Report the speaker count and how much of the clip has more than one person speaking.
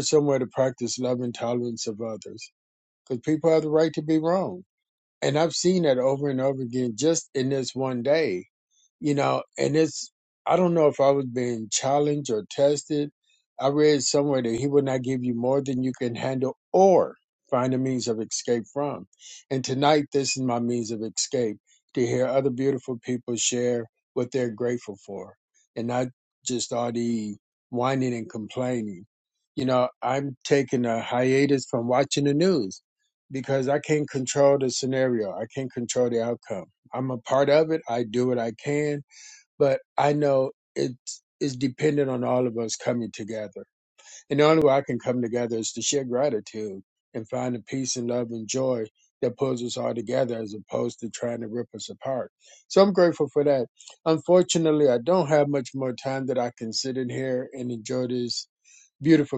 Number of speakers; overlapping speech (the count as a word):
one, no overlap